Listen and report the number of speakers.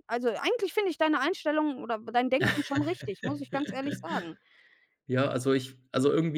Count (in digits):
2